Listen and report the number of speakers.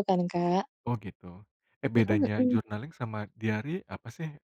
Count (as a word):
two